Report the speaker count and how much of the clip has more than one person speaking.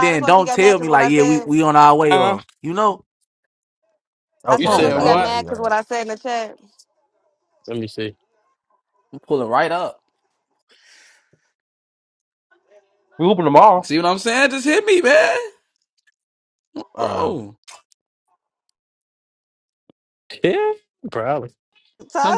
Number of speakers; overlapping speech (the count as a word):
four, about 16%